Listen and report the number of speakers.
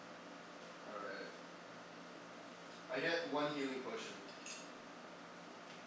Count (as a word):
one